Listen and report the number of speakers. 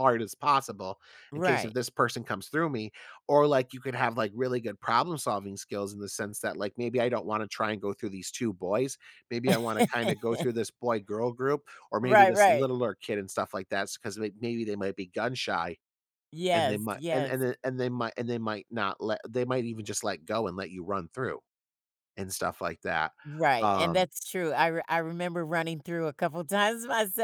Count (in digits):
2